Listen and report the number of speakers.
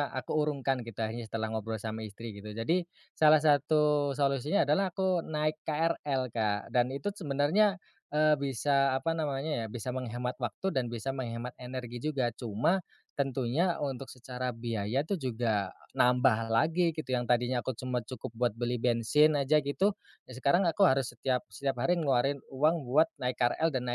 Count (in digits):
1